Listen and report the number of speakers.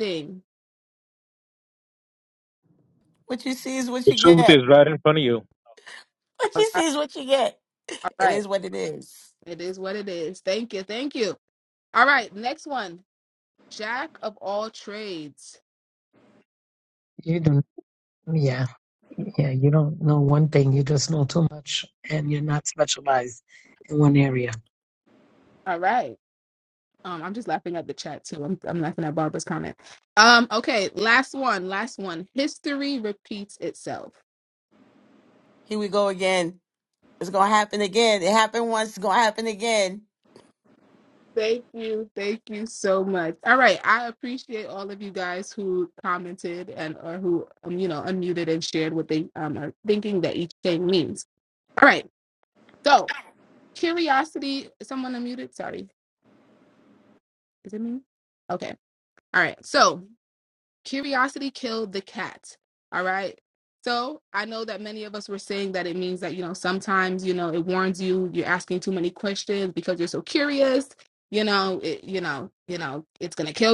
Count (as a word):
four